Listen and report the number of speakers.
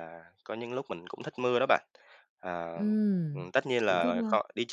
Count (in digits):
2